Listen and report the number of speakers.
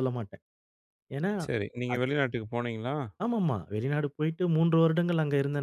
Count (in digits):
2